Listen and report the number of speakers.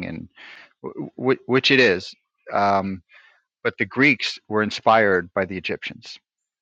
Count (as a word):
one